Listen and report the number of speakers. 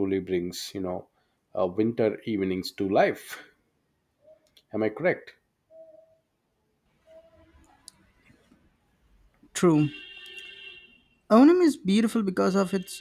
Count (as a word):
two